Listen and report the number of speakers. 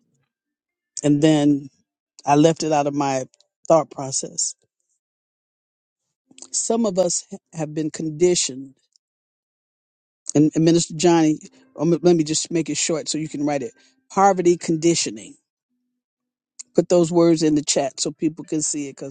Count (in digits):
1